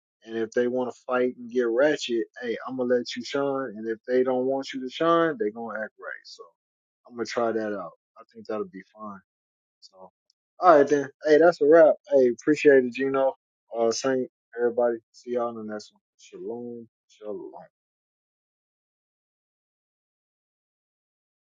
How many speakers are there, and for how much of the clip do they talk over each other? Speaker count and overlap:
1, no overlap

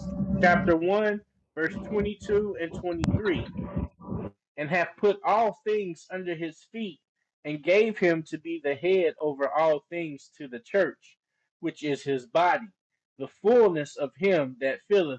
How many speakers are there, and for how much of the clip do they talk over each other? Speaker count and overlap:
1, no overlap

